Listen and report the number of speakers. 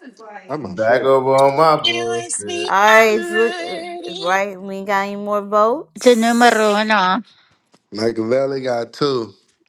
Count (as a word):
five